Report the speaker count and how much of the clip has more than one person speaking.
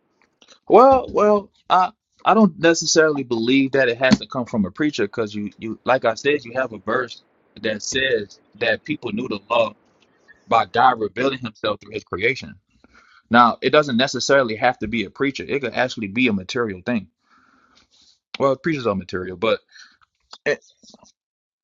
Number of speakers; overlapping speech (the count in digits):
1, no overlap